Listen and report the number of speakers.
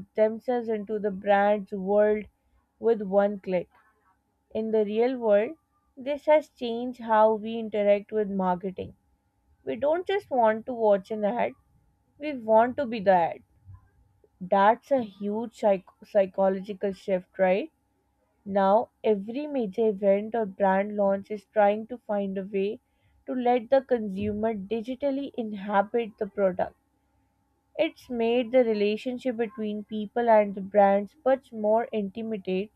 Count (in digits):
1